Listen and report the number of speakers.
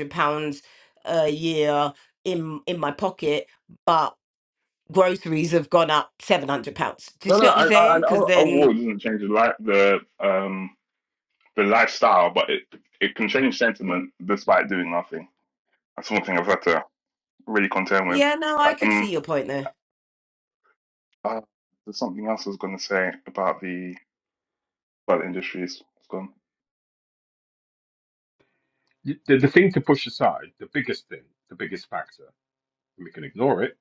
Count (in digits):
3